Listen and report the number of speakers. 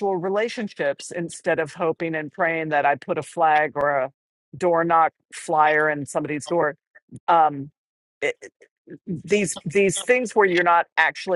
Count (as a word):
one